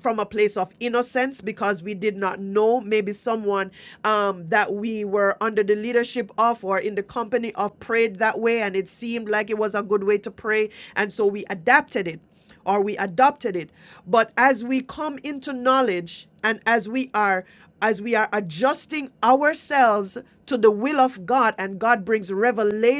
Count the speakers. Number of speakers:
1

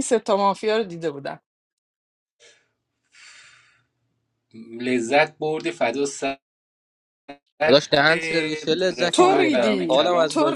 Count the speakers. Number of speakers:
3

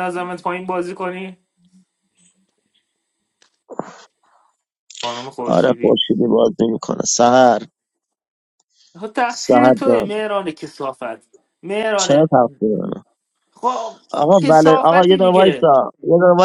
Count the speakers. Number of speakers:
2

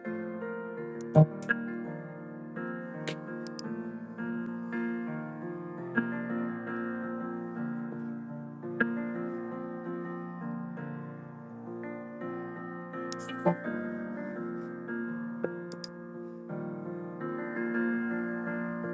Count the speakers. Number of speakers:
0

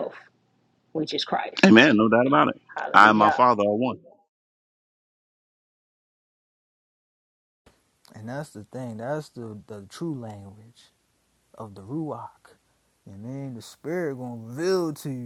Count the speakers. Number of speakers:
3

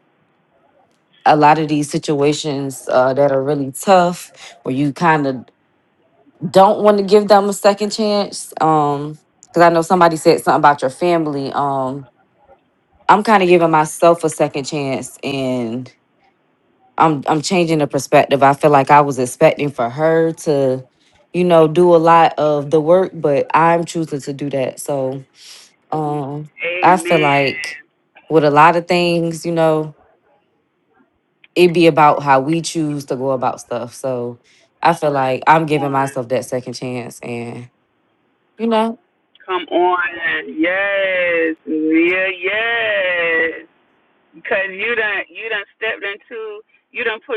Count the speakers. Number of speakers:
2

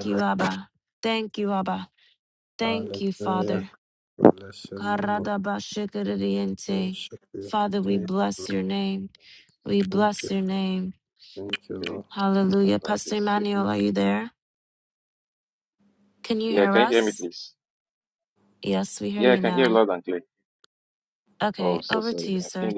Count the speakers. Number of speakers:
3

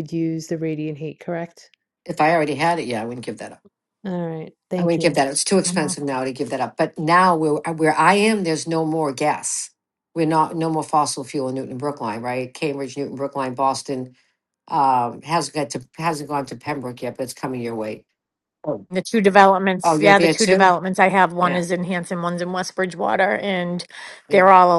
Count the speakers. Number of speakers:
3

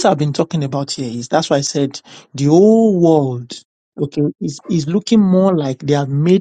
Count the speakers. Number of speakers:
1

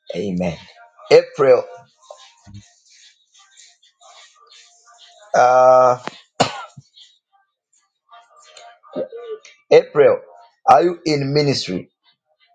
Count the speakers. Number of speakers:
1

